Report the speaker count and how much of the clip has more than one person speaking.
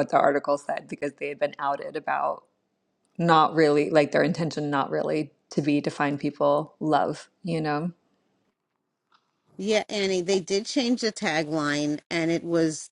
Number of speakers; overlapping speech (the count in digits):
2, no overlap